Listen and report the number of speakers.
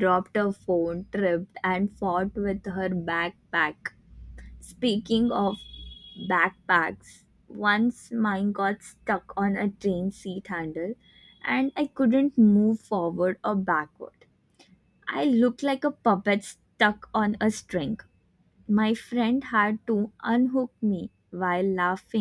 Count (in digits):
1